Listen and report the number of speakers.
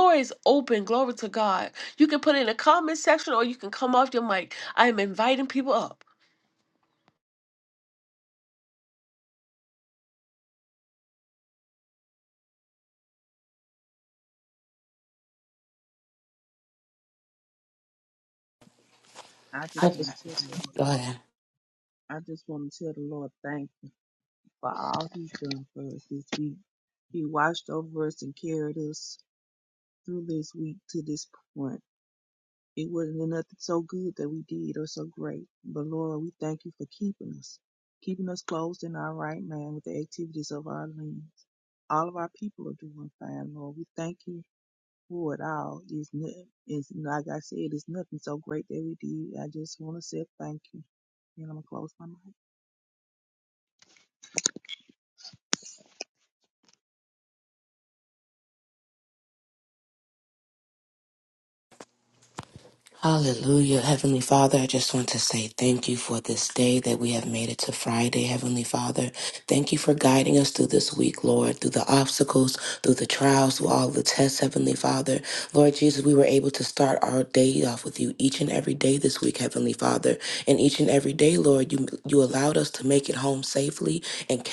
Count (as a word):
three